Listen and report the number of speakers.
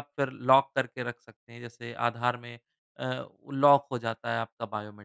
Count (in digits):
1